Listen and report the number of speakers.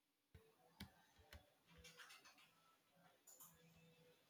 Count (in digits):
0